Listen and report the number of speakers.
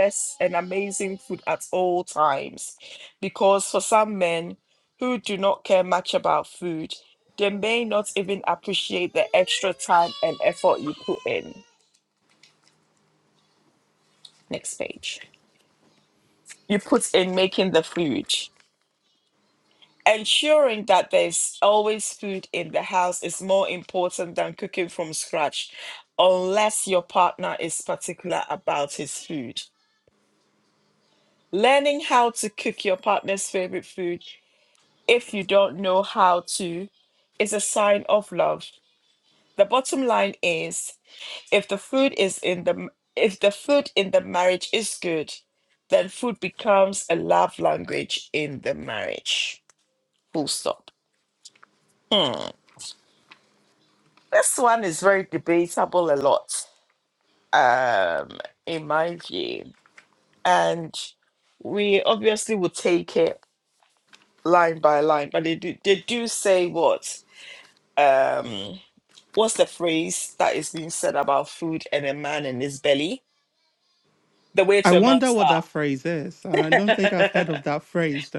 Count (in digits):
2